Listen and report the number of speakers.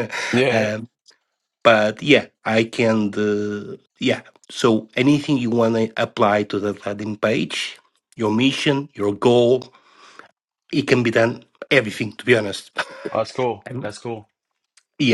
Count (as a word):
two